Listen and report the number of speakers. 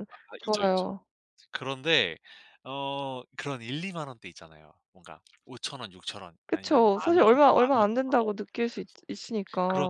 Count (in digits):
2